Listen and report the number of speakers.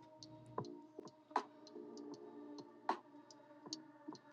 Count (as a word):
zero